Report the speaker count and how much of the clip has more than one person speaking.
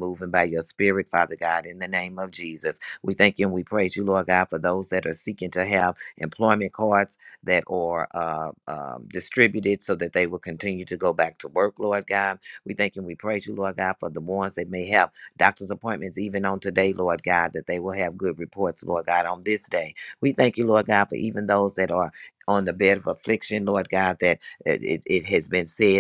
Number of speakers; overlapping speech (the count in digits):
1, no overlap